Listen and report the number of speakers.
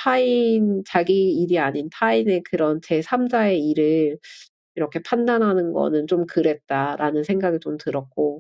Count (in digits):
1